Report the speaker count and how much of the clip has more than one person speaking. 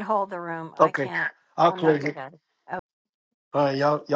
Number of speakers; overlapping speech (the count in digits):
2, about 20%